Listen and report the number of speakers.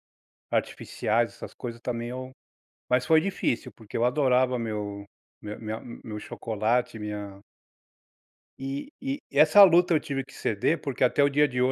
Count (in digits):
1